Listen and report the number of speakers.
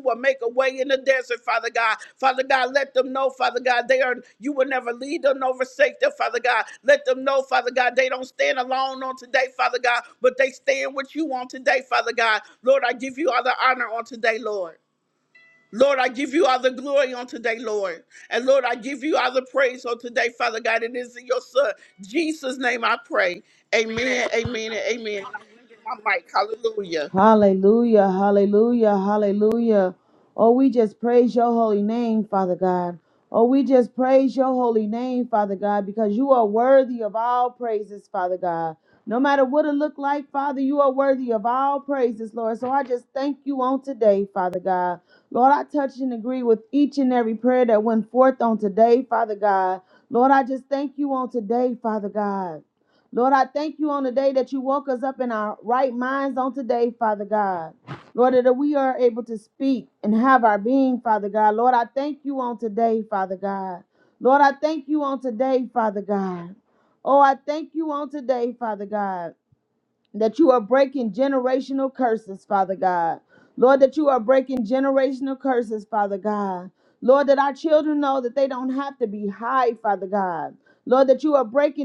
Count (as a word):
two